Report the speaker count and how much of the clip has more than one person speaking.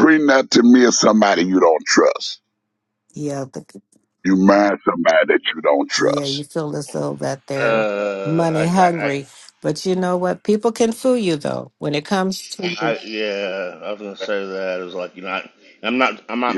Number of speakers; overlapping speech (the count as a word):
three, about 10%